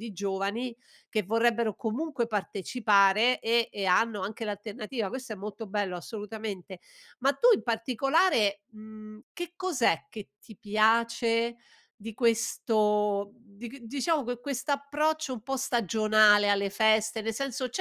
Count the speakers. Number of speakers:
1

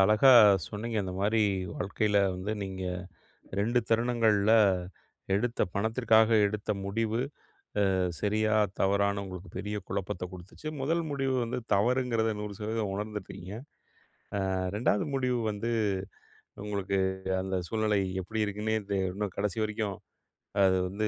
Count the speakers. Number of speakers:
1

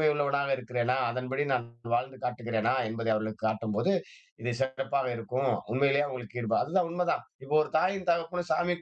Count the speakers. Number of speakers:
1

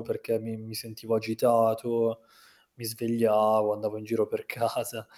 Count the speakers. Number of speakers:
1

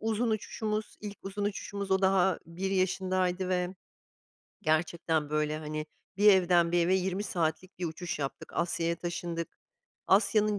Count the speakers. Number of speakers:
1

